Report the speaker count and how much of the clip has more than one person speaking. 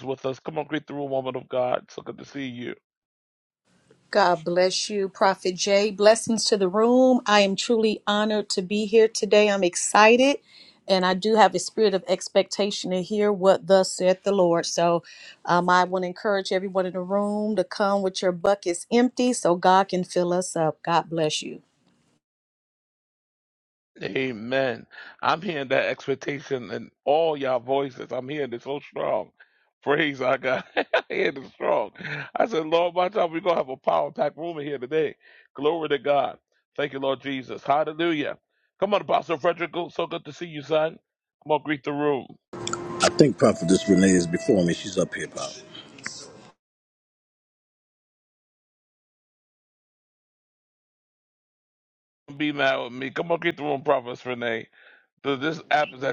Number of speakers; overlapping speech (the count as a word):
three, no overlap